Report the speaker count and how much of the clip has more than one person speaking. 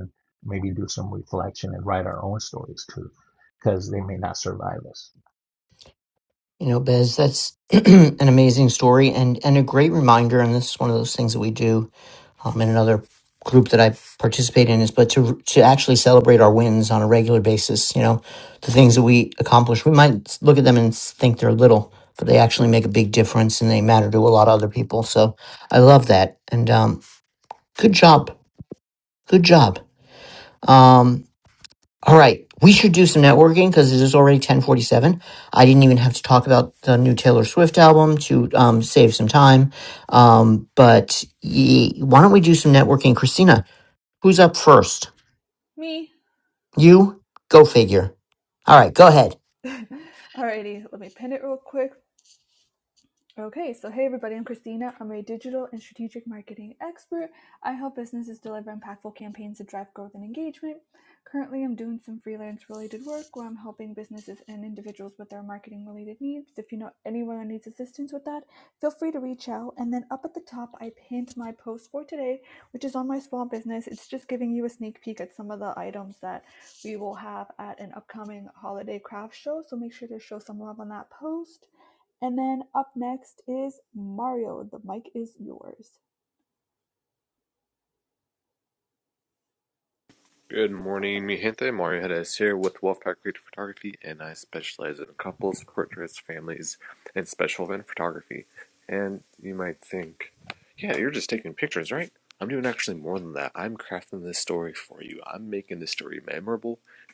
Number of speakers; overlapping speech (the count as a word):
four, no overlap